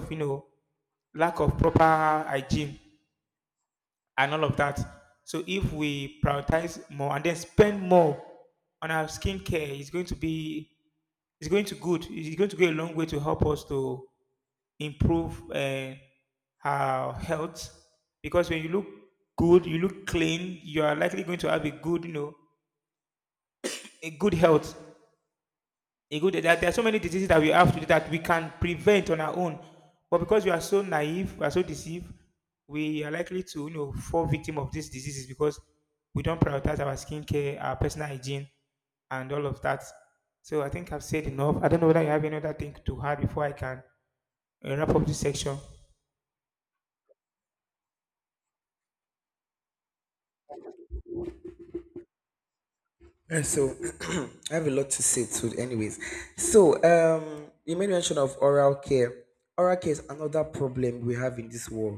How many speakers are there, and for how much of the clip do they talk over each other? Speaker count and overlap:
2, no overlap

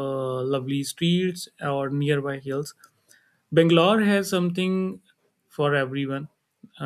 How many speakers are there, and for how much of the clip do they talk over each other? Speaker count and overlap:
1, no overlap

